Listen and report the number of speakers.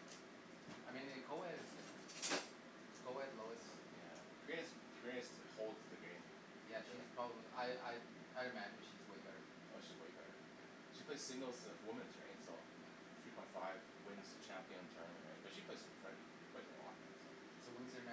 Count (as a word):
two